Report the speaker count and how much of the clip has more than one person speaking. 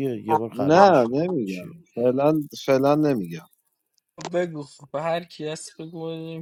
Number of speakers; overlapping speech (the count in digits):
3, about 12%